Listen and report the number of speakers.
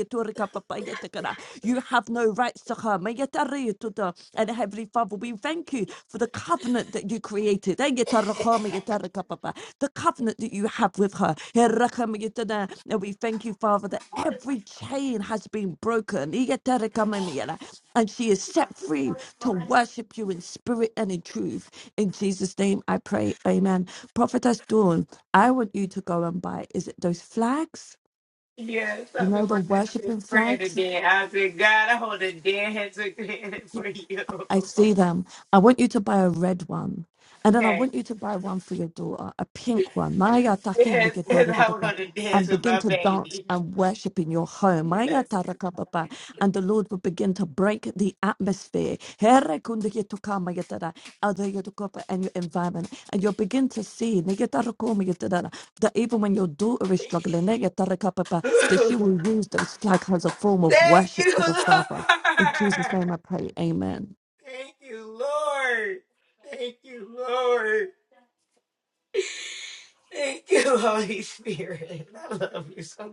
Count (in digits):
2